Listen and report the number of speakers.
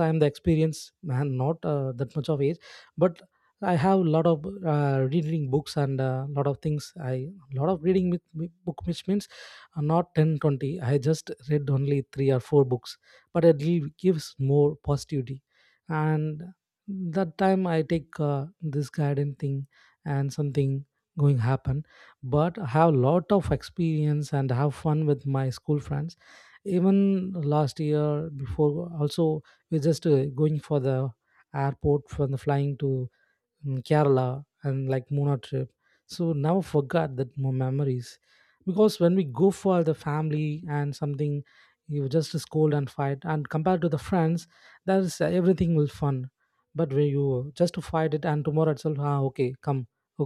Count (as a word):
one